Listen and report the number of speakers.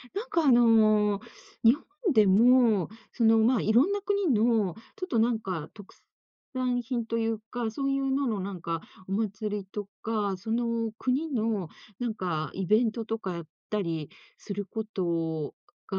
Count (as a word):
one